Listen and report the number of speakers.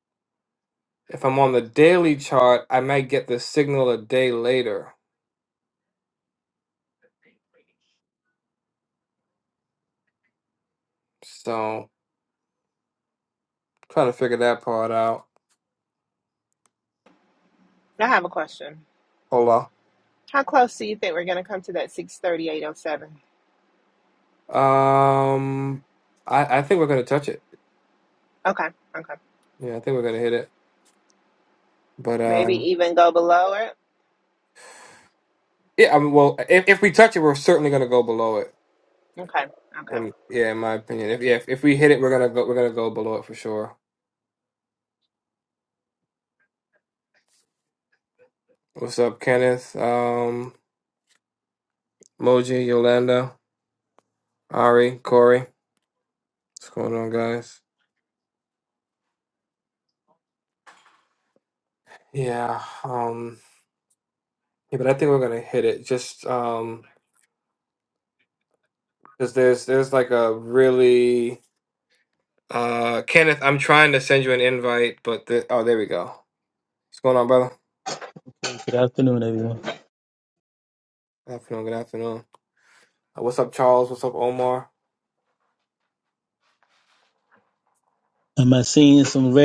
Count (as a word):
three